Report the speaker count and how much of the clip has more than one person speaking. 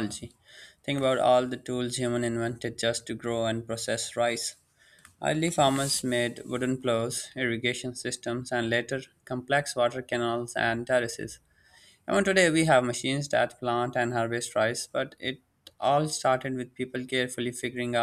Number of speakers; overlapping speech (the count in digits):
1, no overlap